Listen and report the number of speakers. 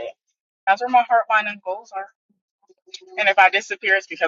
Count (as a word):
one